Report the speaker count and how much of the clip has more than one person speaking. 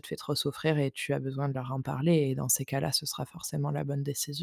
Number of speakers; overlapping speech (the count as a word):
one, no overlap